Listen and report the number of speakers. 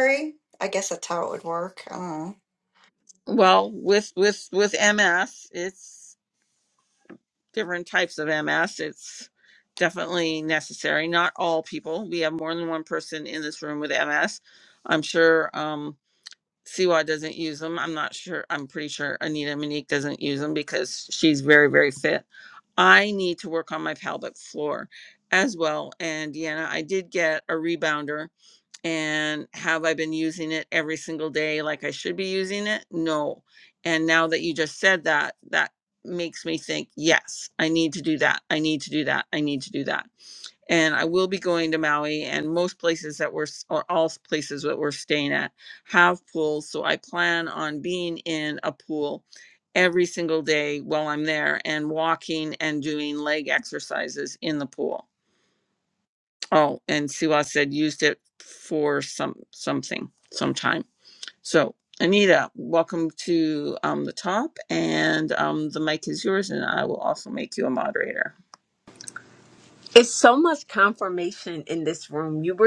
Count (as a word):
three